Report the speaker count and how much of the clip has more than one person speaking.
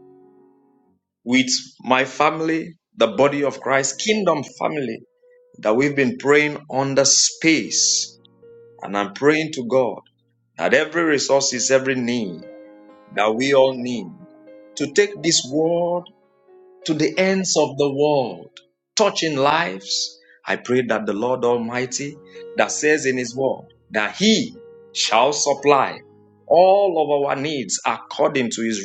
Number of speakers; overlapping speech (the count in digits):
1, no overlap